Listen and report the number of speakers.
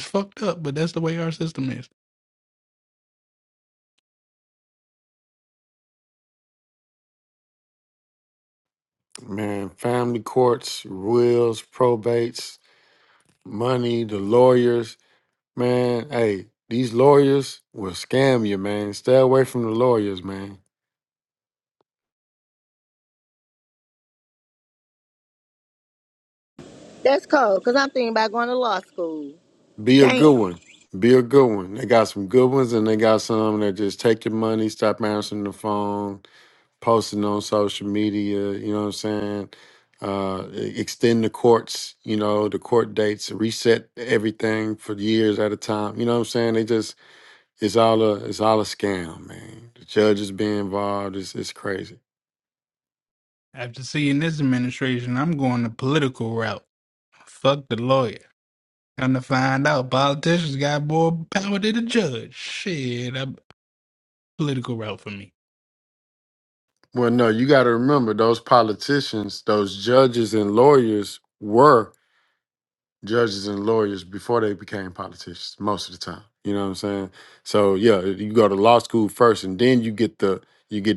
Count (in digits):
3